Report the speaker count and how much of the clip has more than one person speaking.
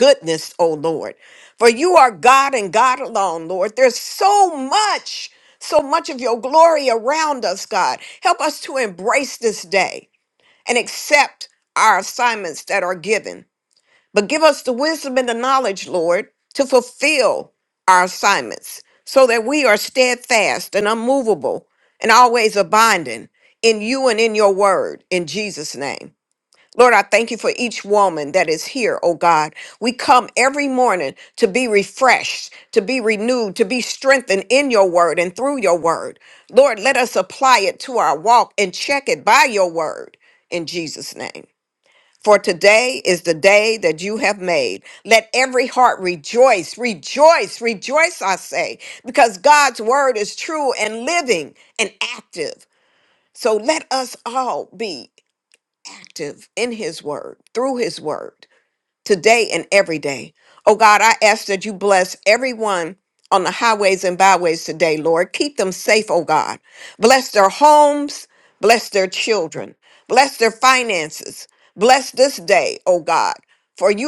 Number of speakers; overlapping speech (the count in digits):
1, no overlap